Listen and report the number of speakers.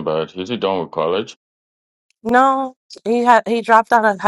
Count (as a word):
two